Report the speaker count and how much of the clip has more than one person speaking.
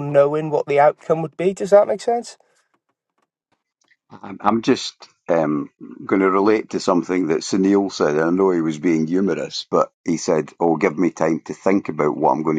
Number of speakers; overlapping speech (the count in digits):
2, no overlap